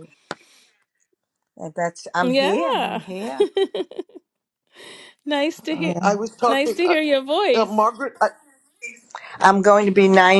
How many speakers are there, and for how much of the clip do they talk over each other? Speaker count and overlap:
three, about 18%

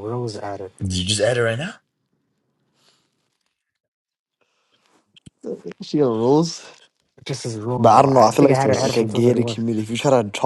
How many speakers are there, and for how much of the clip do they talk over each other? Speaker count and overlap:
three, about 17%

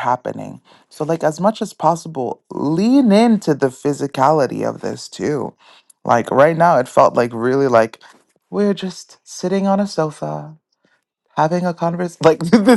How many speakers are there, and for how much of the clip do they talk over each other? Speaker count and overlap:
one, no overlap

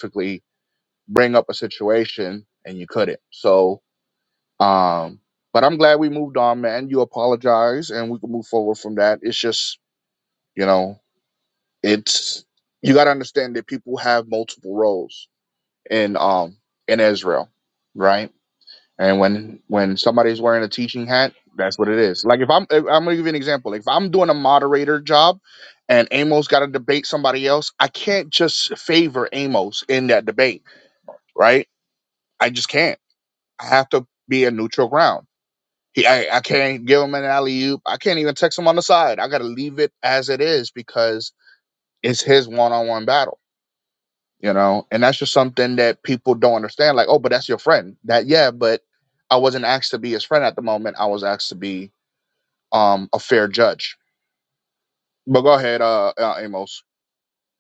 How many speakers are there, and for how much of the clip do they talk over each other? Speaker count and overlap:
one, no overlap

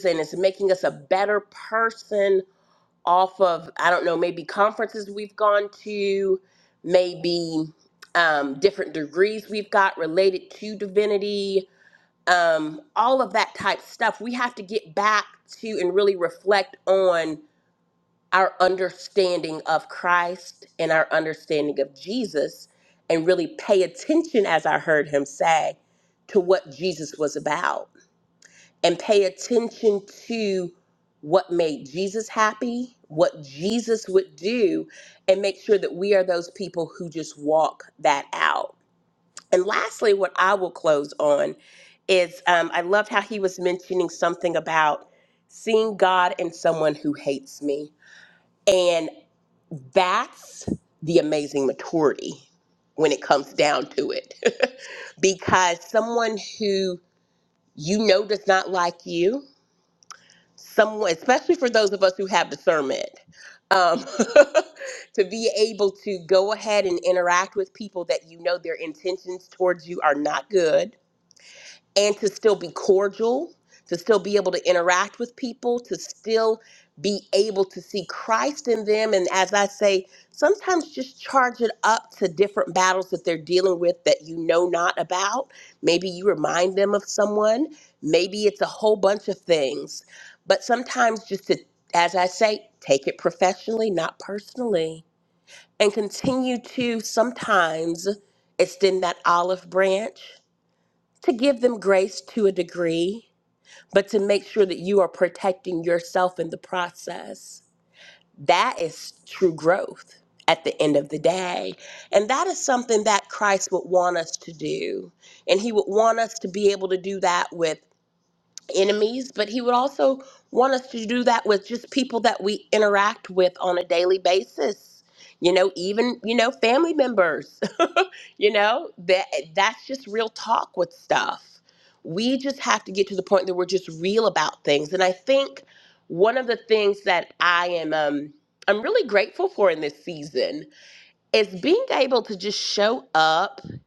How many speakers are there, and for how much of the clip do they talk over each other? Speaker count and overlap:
one, no overlap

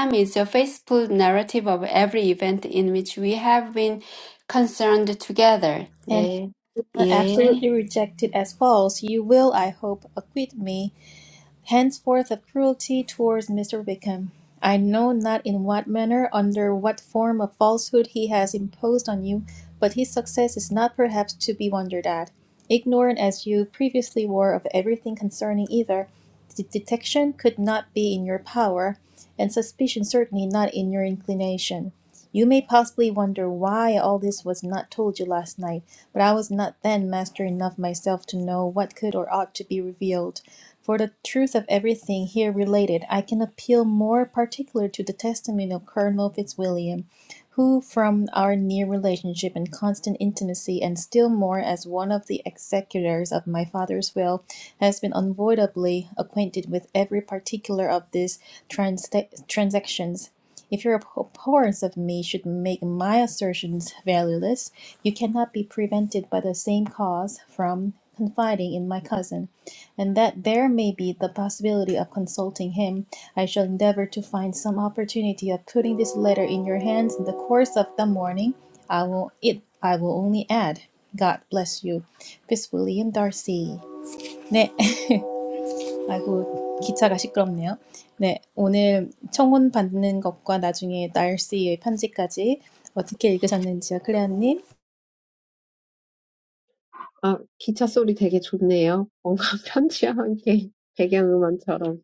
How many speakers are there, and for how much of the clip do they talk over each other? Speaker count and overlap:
three, about 1%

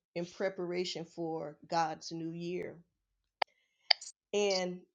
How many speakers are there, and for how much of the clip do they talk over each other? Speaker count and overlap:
one, no overlap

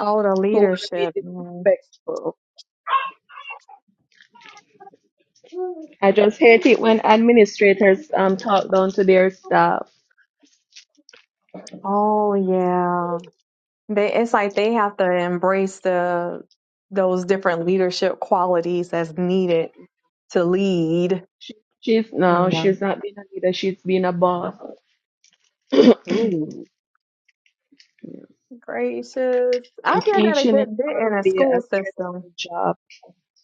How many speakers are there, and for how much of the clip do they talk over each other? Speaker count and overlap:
two, about 9%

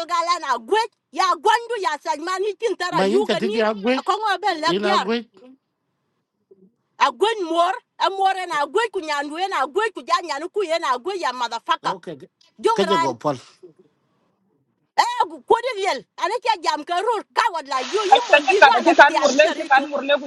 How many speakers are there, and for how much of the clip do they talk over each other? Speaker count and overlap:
three, about 19%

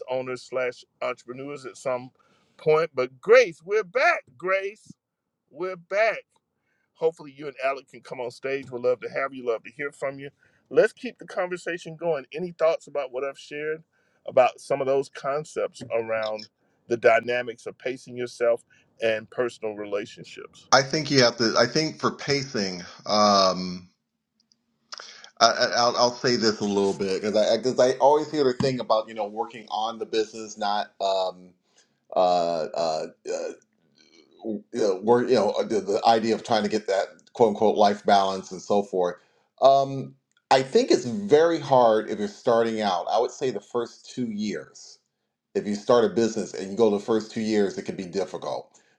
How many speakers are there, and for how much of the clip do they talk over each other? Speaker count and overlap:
two, no overlap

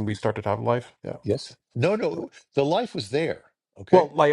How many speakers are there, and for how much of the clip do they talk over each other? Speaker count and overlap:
two, about 3%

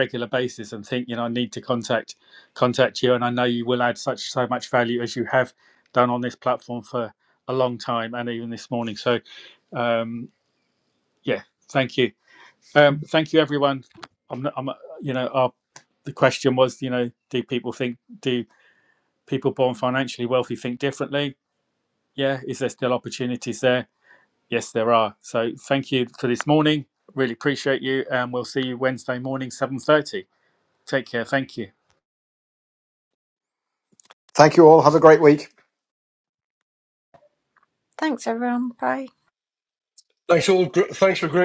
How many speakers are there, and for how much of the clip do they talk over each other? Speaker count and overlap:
four, no overlap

